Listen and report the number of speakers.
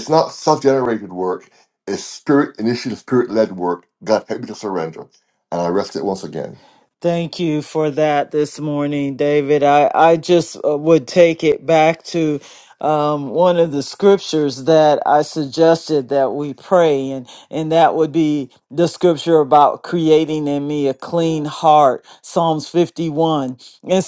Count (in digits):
2